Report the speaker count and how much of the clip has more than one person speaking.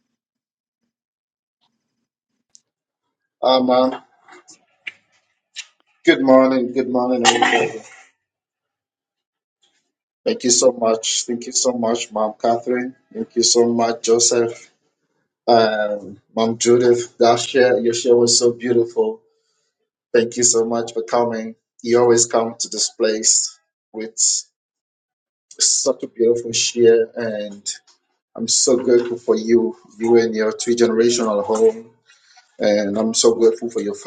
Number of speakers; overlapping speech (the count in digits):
1, no overlap